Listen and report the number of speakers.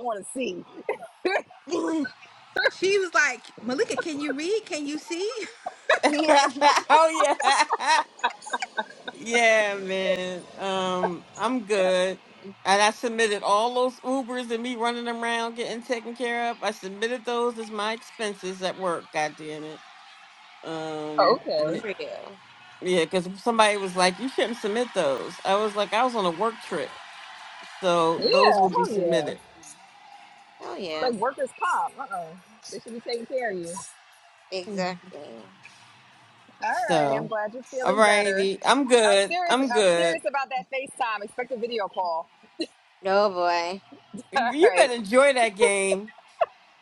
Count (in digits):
4